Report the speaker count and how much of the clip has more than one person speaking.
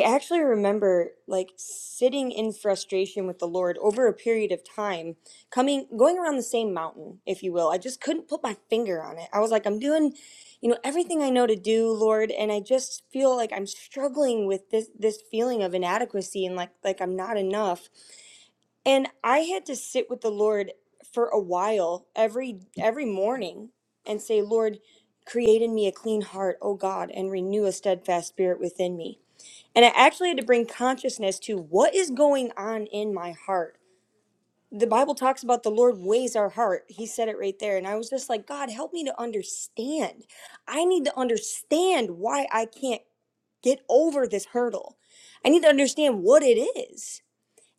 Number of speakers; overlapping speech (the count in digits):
1, no overlap